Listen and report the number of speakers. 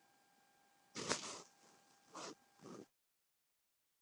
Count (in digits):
0